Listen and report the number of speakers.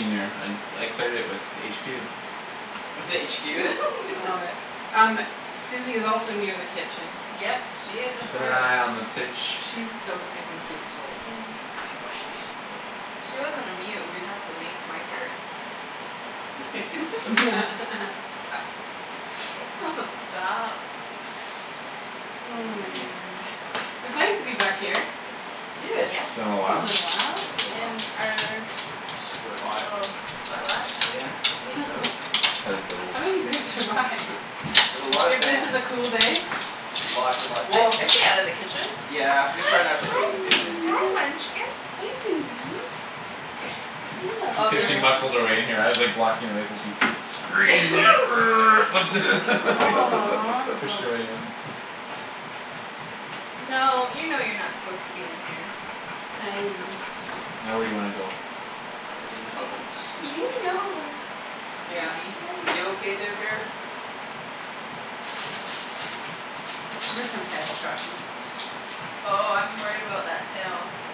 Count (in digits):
4